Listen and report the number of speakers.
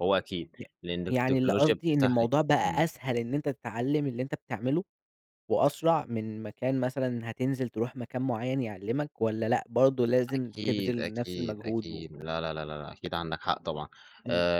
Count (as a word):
two